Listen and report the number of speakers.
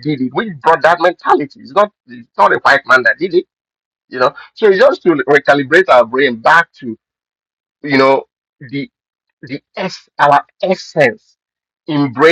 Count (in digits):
1